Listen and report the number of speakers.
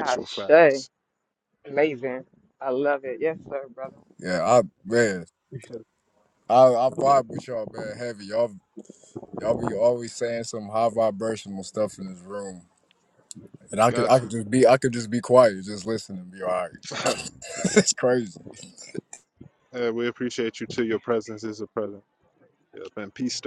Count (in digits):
3